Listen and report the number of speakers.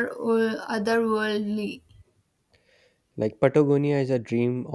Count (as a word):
two